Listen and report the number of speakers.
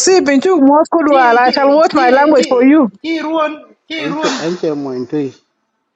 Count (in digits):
3